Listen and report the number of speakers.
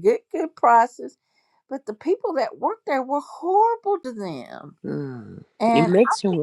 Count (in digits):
2